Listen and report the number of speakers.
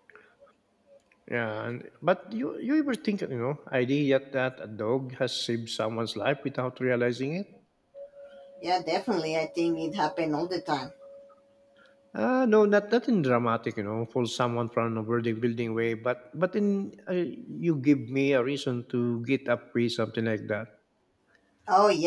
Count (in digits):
2